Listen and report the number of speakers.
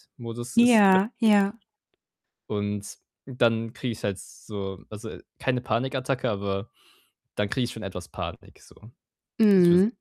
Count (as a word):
two